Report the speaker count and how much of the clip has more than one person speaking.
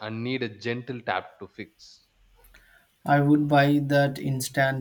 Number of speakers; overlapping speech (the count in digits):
2, no overlap